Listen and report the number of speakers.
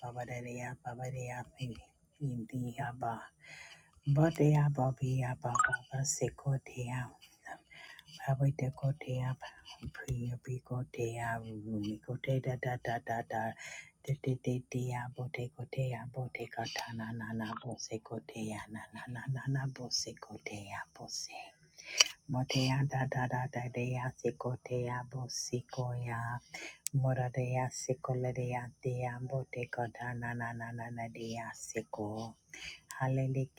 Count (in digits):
1